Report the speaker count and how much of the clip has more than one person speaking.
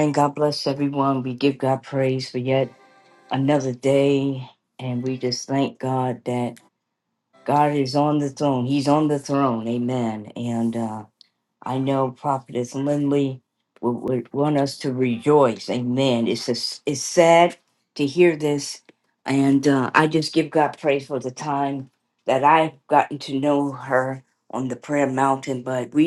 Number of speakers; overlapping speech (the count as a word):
one, no overlap